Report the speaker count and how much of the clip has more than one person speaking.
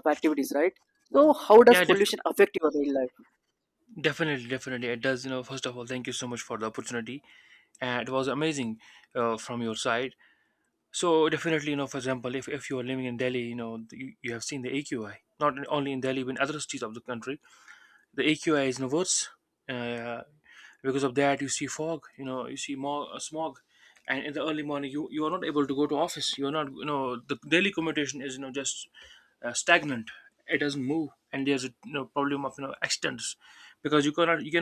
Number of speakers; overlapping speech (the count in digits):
2, about 1%